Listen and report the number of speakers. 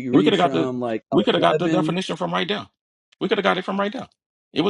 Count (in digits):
2